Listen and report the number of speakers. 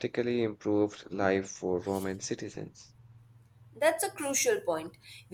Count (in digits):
2